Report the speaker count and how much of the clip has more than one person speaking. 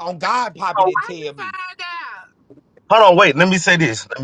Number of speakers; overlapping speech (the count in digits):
3, about 18%